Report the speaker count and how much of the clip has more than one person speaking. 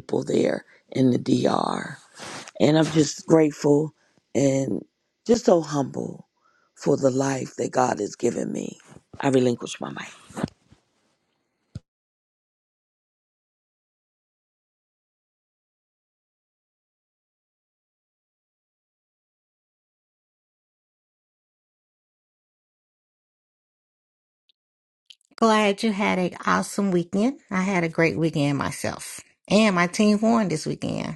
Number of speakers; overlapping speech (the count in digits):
2, no overlap